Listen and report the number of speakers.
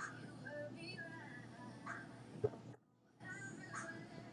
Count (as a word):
zero